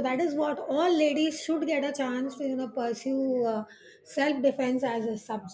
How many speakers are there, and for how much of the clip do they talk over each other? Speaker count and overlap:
1, no overlap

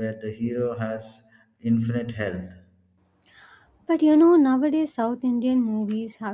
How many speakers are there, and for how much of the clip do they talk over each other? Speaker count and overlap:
2, no overlap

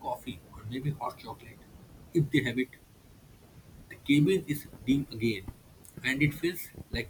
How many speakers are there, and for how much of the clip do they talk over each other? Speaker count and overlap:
1, no overlap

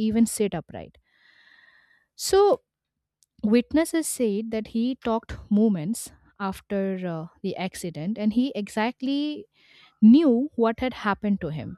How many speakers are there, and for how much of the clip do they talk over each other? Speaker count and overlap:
1, no overlap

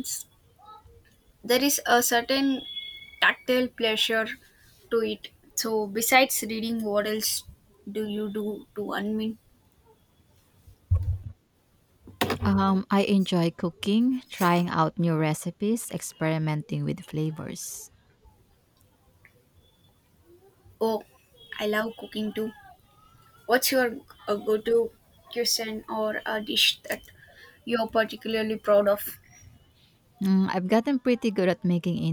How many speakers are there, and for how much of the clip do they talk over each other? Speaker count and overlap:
2, no overlap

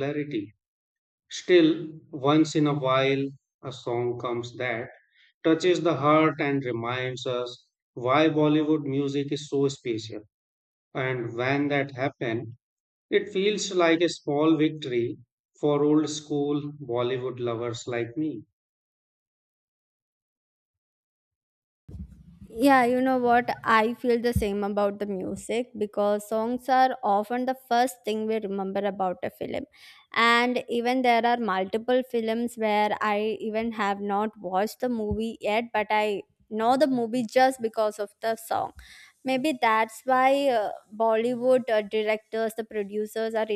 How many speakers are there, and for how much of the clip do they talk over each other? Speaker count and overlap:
2, no overlap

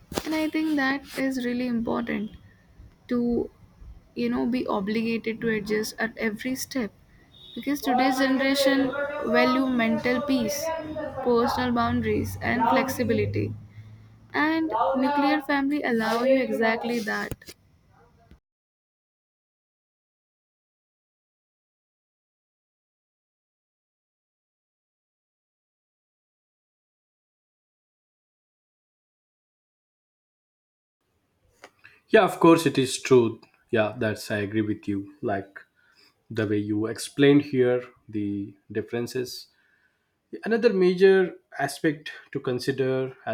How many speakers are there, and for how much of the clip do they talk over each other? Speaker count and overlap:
2, no overlap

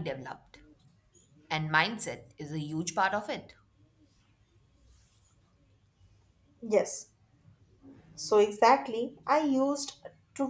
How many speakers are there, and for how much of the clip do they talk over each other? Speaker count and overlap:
2, no overlap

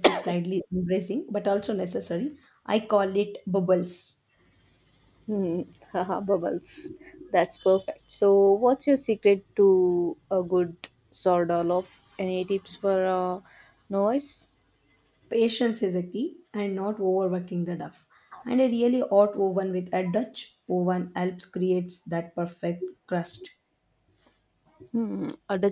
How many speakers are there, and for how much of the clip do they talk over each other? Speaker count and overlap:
2, no overlap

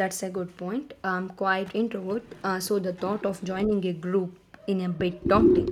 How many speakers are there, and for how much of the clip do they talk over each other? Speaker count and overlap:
1, no overlap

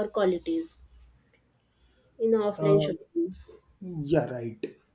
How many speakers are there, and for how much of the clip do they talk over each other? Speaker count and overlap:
2, about 7%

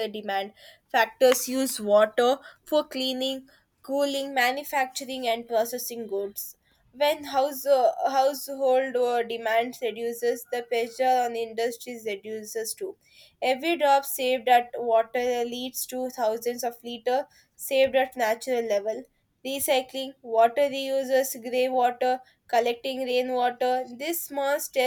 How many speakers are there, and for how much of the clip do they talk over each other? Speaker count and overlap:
1, no overlap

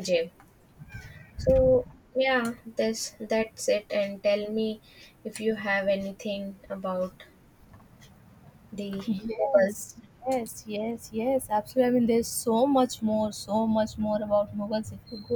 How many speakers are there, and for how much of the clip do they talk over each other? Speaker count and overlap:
2, about 2%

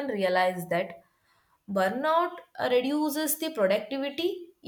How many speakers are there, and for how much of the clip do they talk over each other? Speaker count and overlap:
1, no overlap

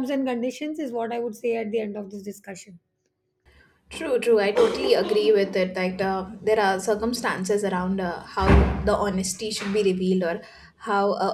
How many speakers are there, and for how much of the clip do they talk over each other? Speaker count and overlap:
2, no overlap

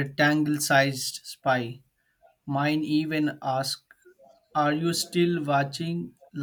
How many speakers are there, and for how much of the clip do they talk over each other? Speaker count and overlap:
1, no overlap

